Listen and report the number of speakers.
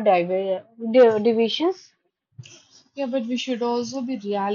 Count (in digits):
2